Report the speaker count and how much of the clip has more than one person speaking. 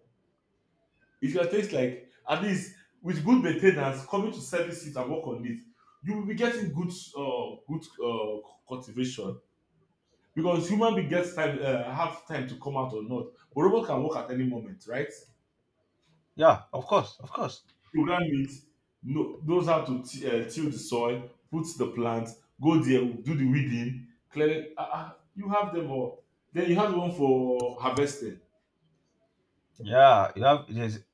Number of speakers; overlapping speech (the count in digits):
2, no overlap